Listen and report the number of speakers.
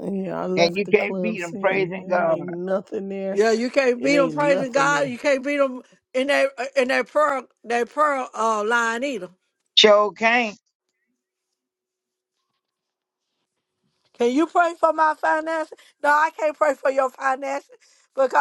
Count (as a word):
three